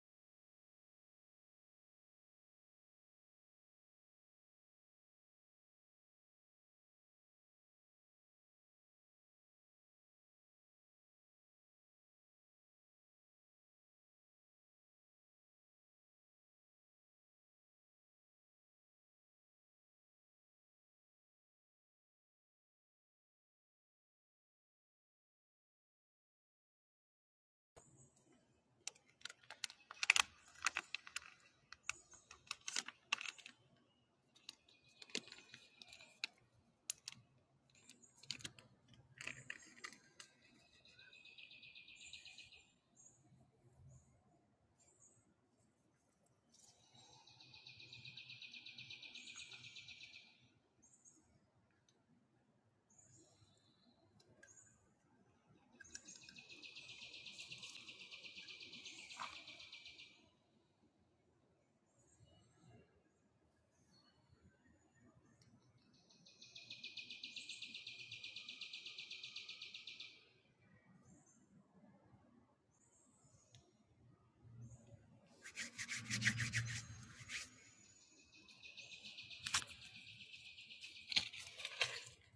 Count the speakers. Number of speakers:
0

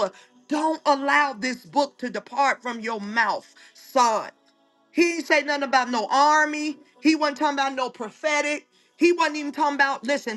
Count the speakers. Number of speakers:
1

